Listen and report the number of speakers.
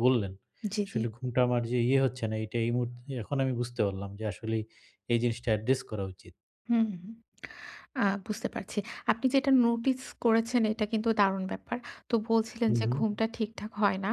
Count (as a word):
two